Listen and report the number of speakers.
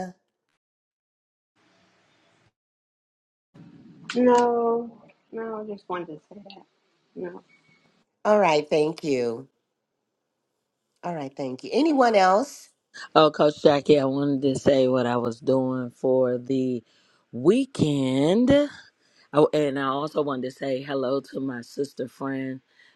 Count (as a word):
three